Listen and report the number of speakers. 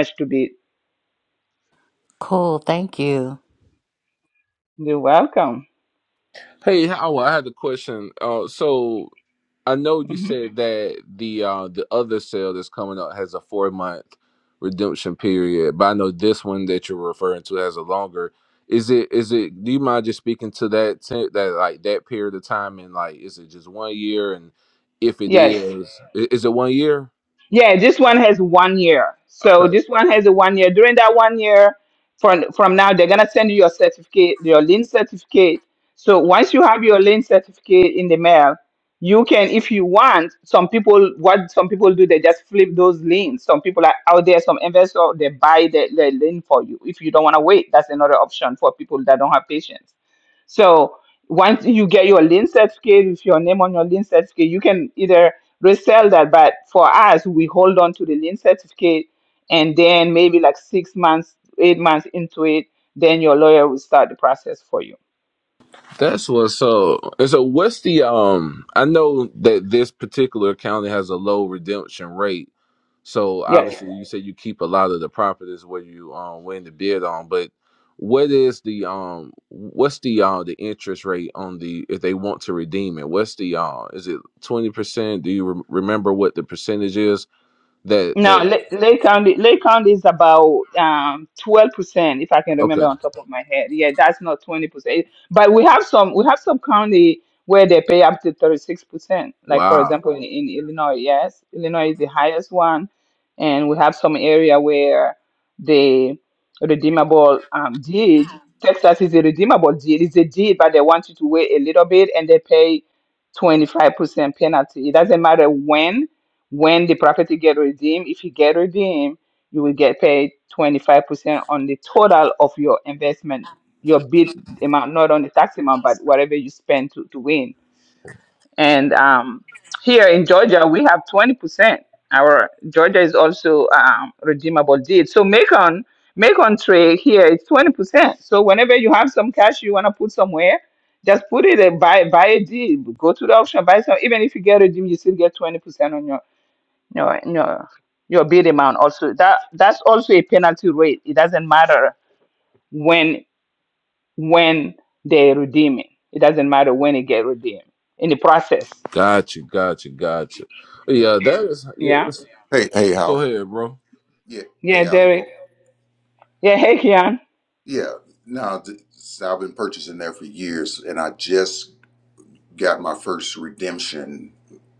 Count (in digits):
4